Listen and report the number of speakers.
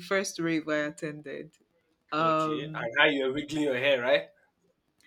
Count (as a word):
two